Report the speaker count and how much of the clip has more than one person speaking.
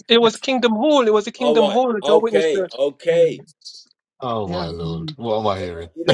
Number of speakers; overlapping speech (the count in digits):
3, about 40%